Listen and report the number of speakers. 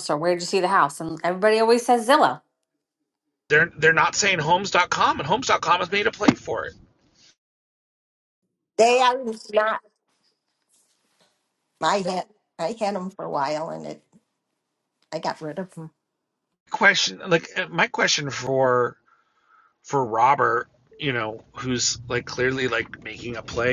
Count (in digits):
3